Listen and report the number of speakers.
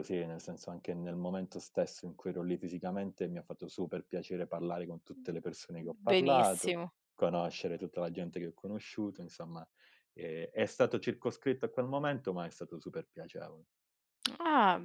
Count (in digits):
2